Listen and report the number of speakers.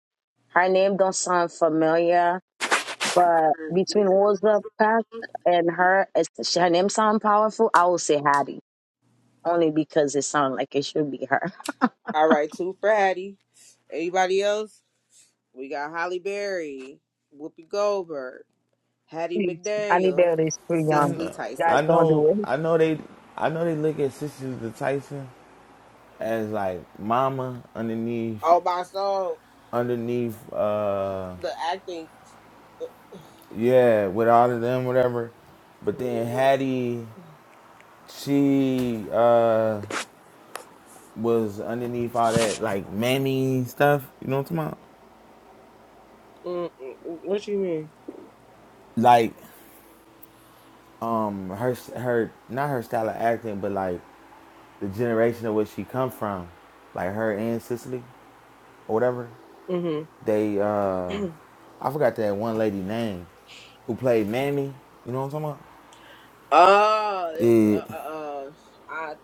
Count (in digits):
3